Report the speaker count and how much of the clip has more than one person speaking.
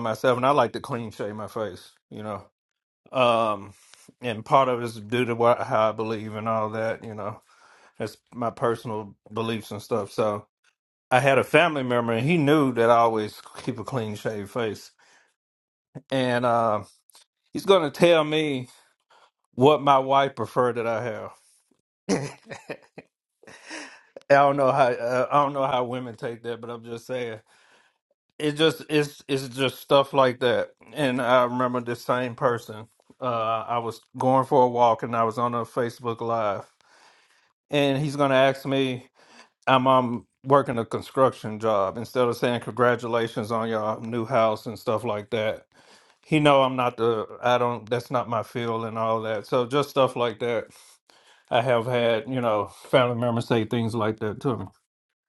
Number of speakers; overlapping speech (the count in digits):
1, no overlap